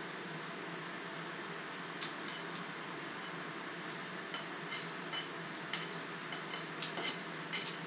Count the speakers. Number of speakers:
zero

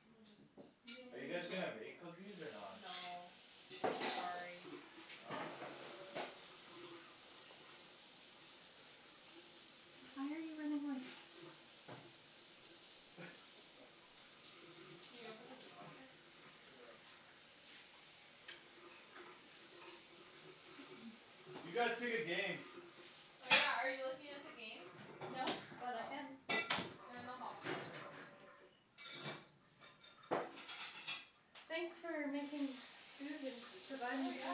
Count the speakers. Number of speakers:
three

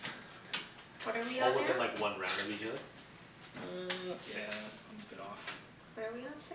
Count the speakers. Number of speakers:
three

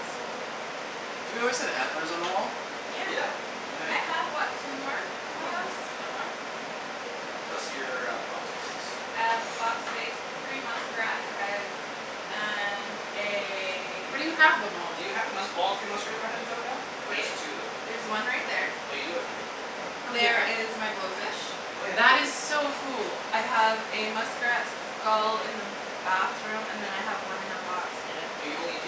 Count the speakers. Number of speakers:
four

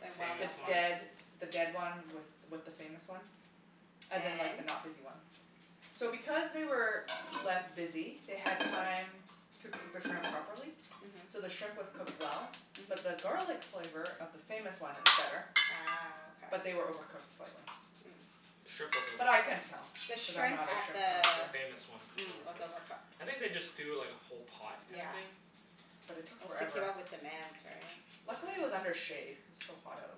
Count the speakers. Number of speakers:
three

